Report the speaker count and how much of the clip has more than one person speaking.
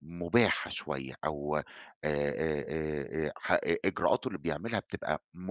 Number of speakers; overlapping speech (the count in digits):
1, no overlap